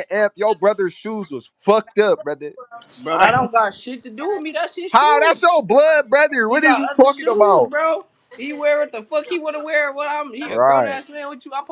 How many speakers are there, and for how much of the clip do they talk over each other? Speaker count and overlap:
2, about 22%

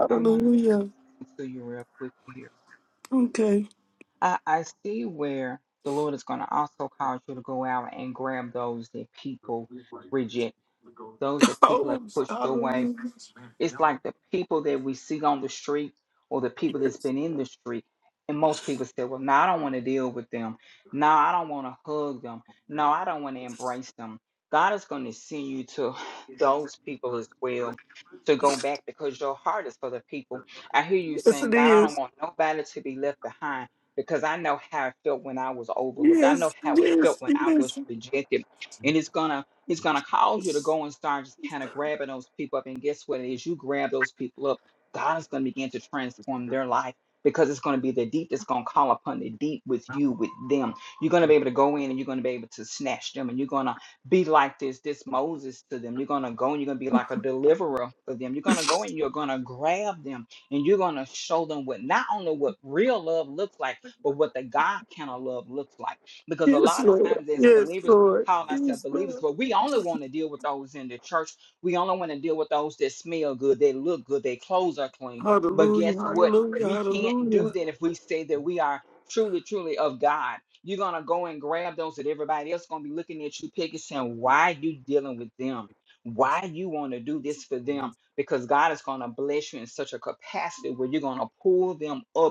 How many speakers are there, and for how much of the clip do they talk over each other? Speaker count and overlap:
2, about 10%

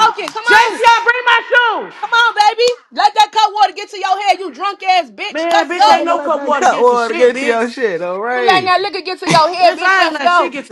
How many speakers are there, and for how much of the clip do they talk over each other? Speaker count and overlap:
3, about 42%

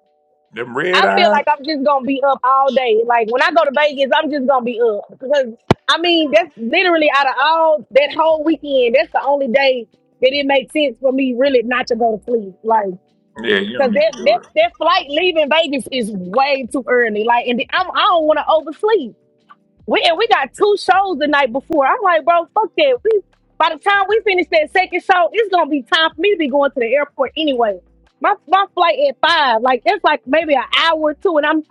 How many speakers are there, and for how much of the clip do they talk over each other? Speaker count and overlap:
2, about 4%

